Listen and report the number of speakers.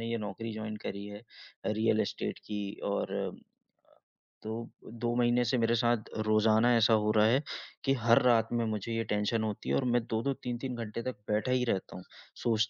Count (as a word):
one